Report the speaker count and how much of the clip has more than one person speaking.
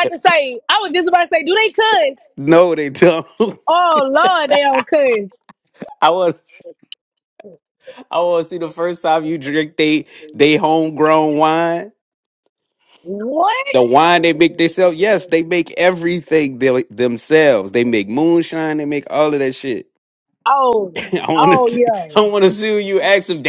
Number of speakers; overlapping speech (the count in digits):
2, about 2%